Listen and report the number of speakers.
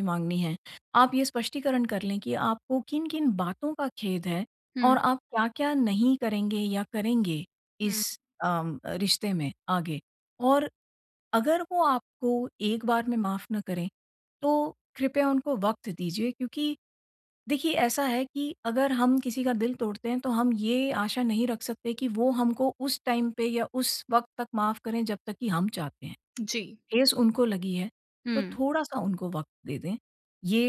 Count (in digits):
2